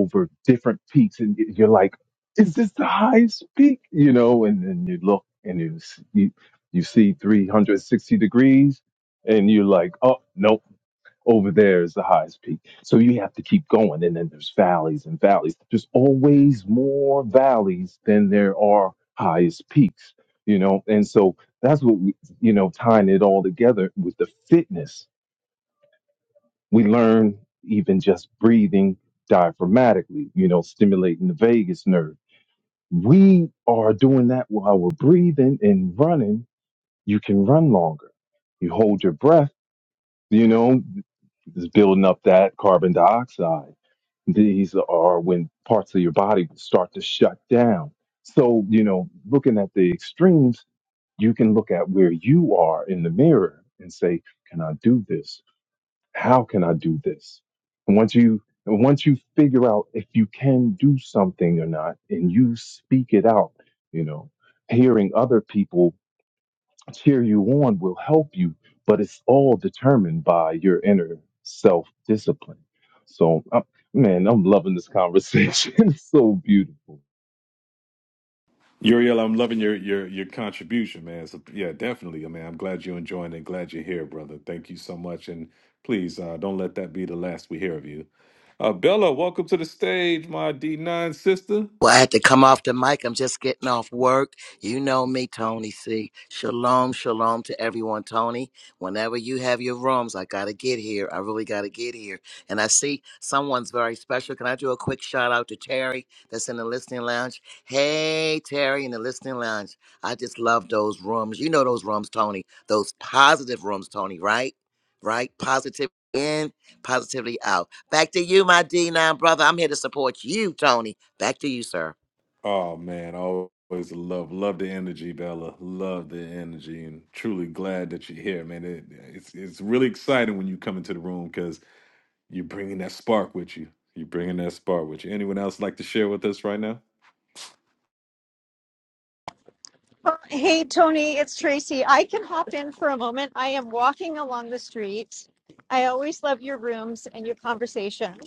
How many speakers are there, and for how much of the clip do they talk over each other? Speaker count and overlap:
four, no overlap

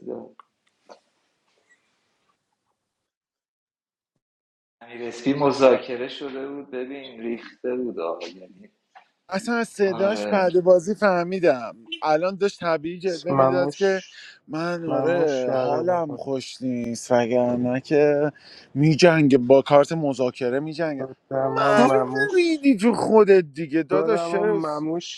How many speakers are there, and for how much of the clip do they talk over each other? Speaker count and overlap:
three, about 19%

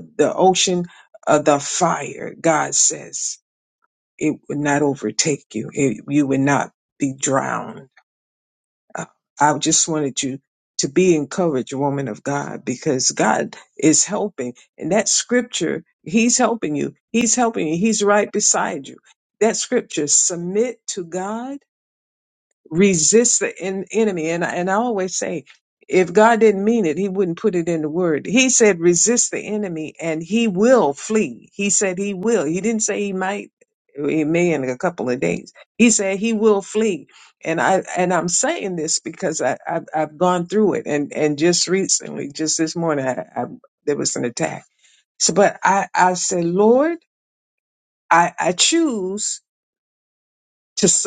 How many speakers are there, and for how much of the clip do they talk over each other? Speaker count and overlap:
one, no overlap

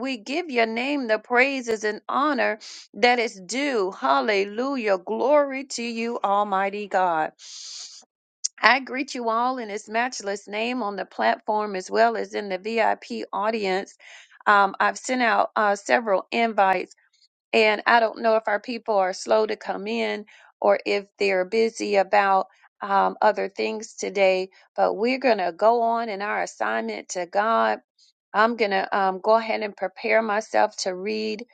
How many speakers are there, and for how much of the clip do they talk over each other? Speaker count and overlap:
one, no overlap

